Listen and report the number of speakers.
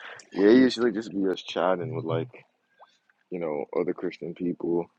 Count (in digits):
1